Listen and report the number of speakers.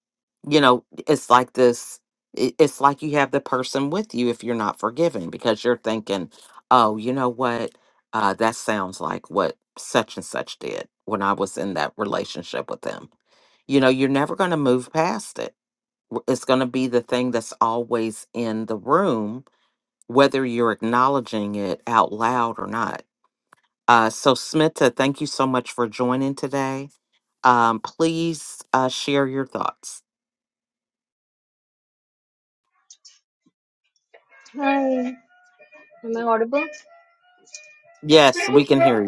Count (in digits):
2